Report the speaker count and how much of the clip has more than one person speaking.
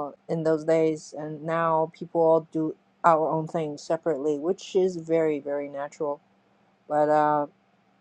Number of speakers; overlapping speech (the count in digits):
1, no overlap